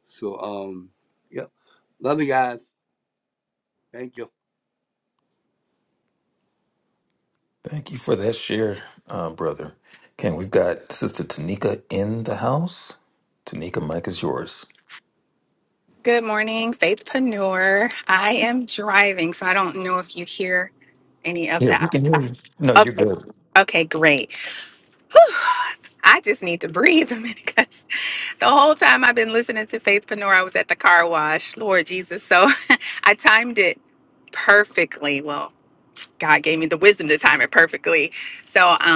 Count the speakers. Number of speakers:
3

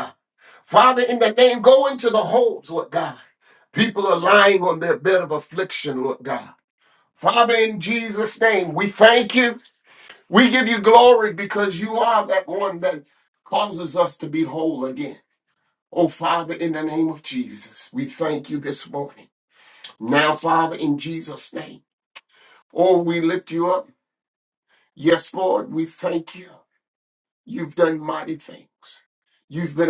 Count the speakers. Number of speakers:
1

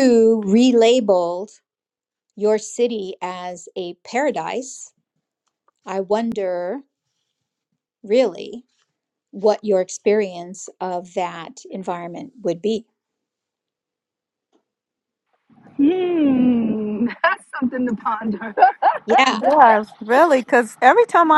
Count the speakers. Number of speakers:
3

